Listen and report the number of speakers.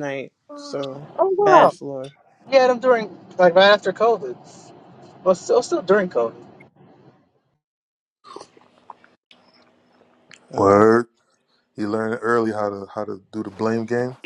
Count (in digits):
3